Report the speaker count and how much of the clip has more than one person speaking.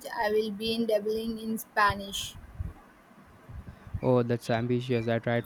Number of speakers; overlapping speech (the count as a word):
two, no overlap